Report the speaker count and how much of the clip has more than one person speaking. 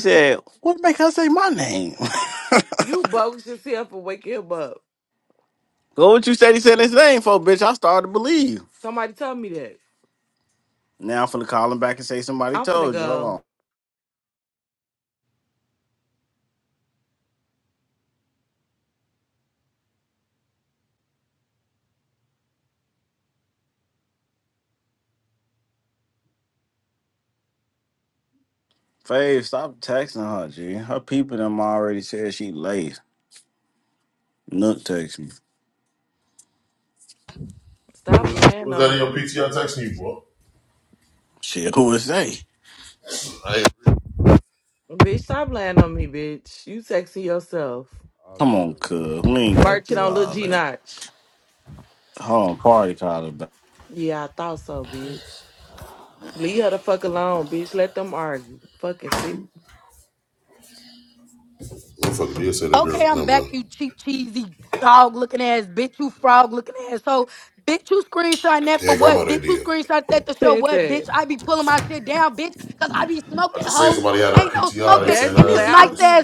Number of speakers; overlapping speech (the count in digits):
4, about 11%